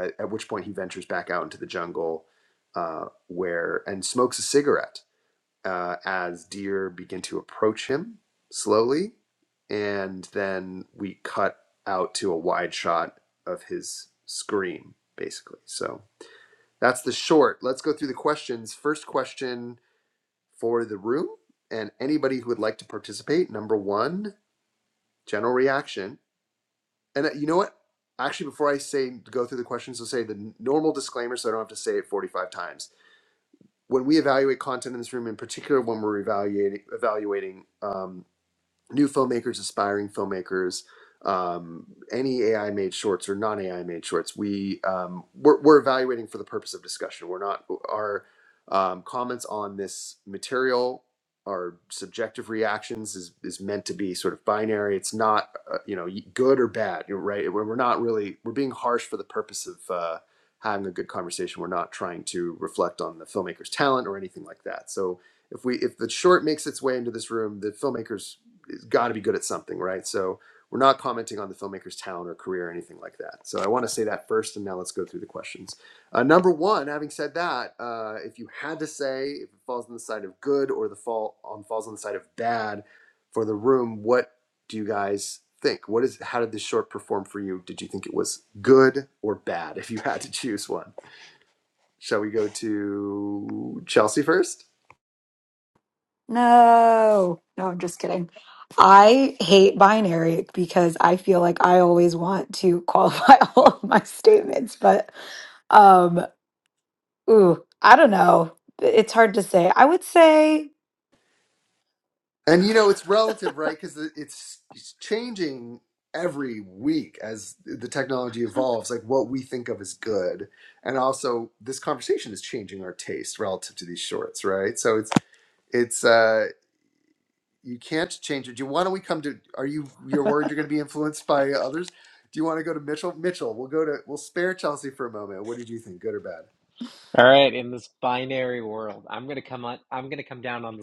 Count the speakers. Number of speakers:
3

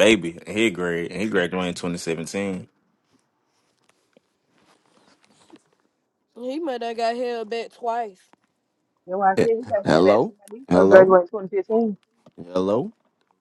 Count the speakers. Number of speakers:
4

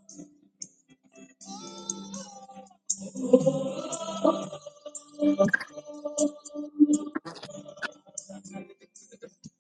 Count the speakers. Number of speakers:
0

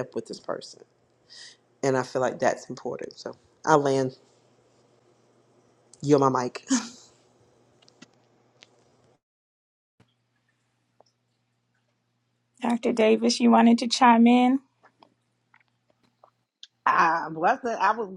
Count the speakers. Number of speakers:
3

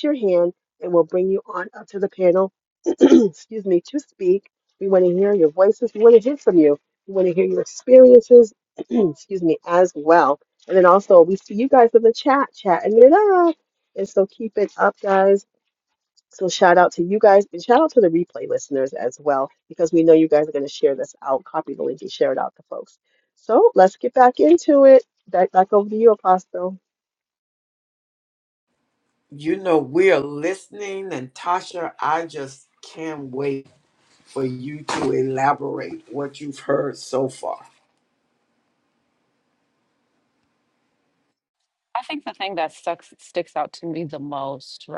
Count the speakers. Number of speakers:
3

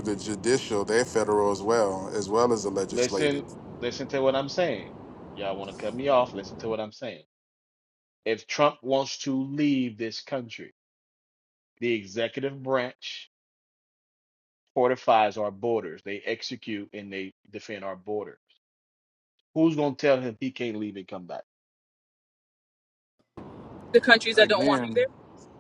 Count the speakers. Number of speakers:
3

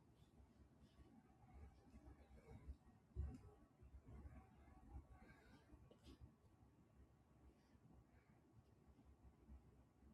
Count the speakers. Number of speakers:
0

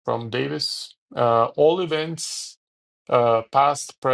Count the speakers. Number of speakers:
1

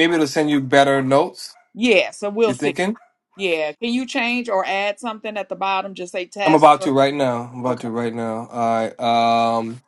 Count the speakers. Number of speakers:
2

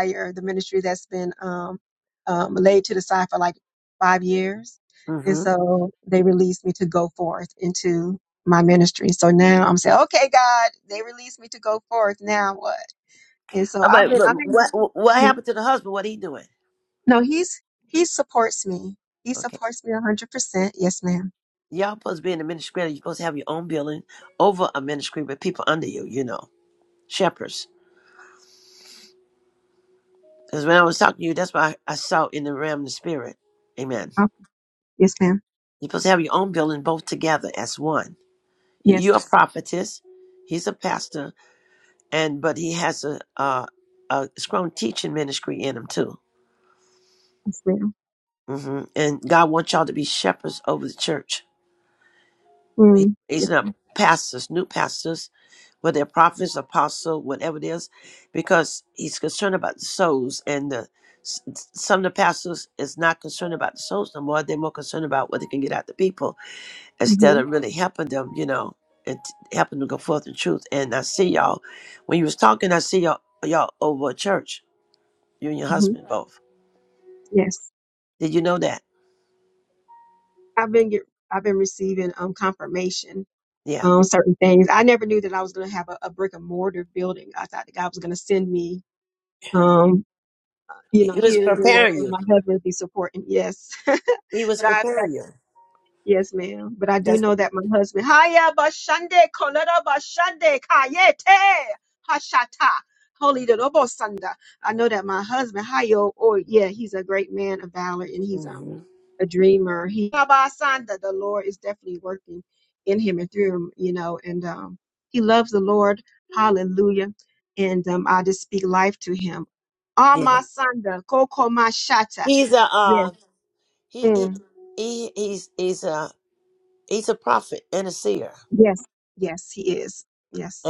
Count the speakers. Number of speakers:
2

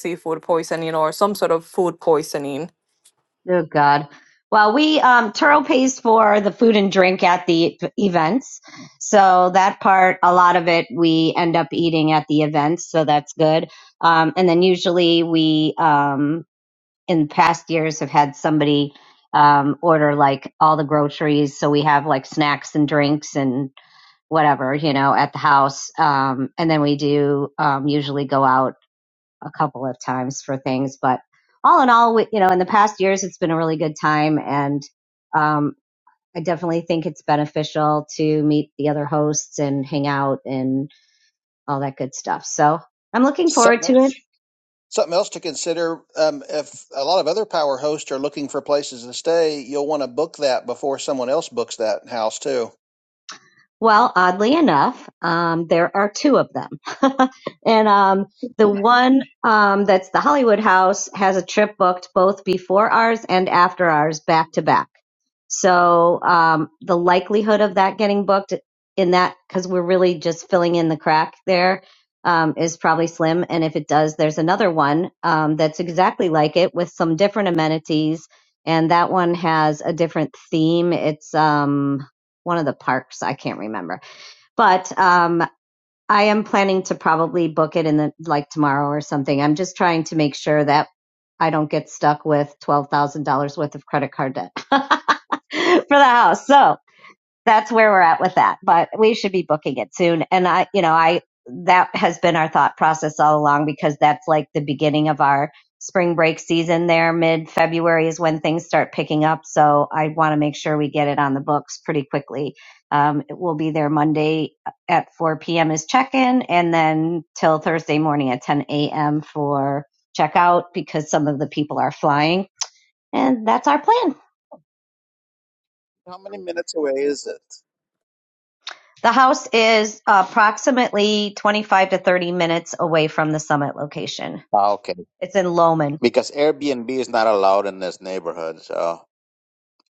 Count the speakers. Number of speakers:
4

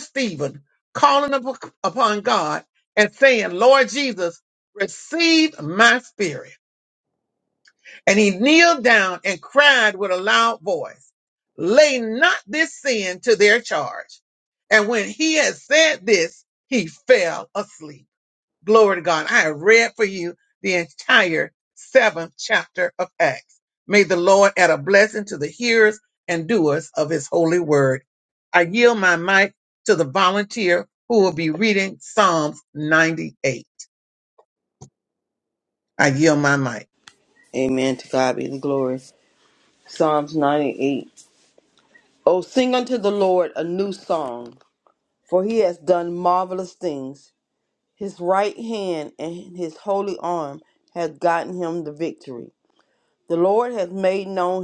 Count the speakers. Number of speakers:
2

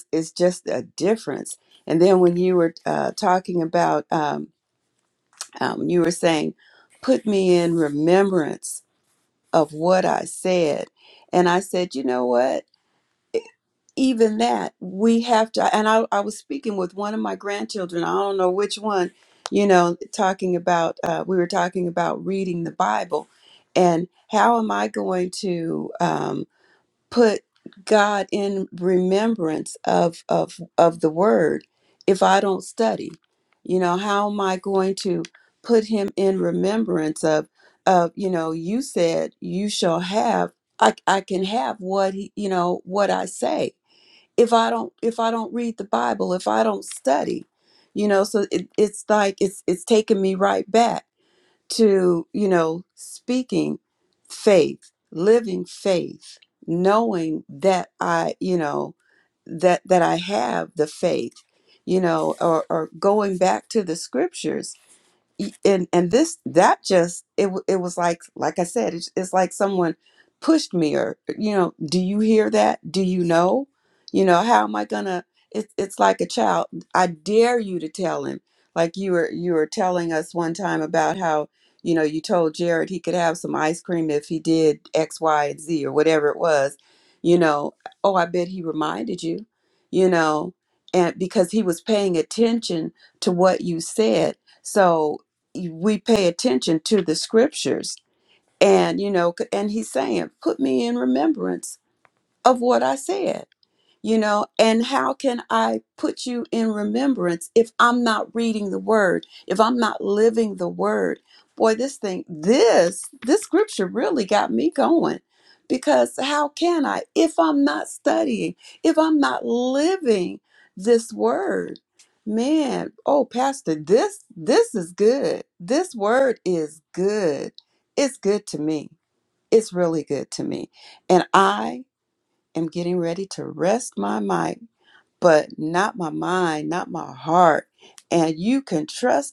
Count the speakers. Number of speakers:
1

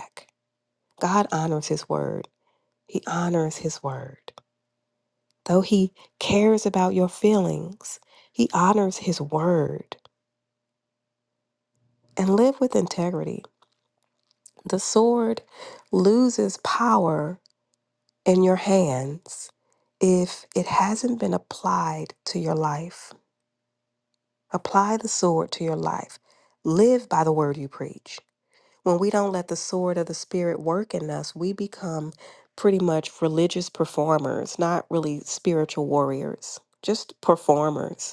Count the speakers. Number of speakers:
1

